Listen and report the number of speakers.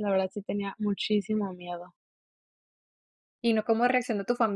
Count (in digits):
2